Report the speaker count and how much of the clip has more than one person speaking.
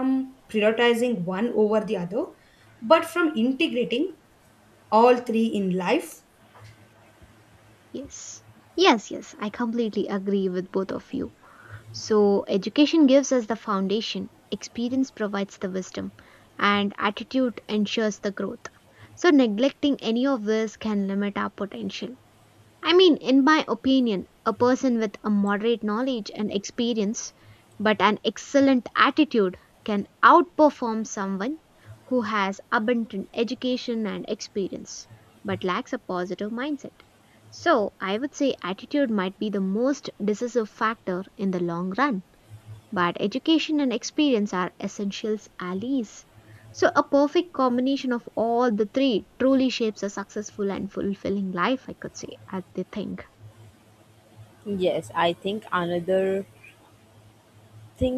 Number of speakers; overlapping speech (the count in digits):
3, no overlap